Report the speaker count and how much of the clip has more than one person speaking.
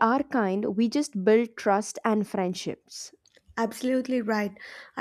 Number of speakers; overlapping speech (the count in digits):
2, no overlap